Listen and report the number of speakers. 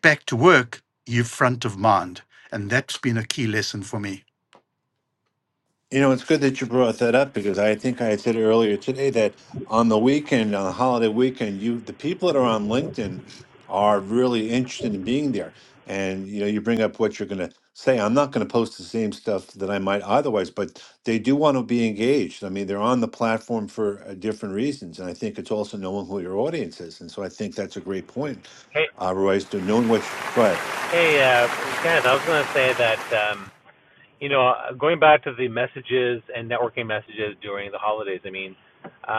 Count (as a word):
three